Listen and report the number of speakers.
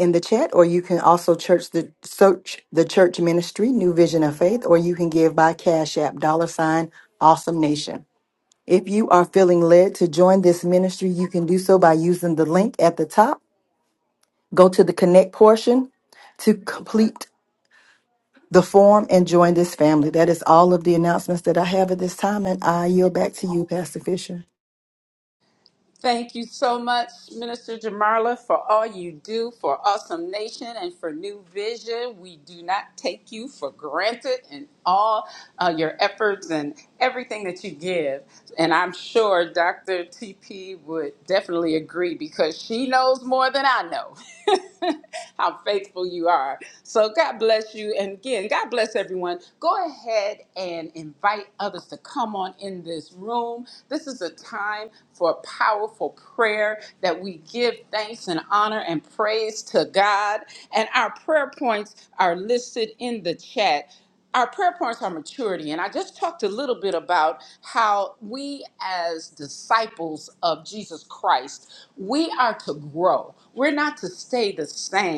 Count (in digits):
2